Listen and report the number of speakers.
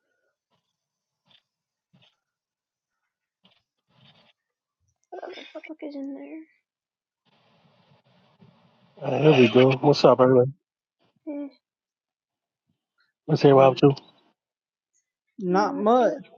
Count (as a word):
three